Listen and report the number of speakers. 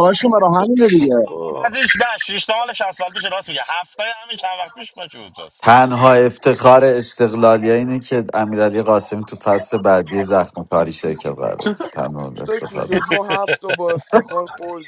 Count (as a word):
four